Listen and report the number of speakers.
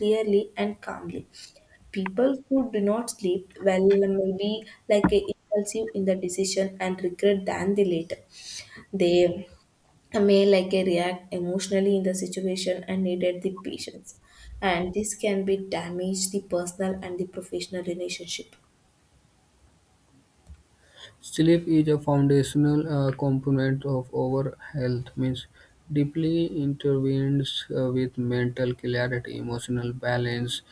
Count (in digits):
2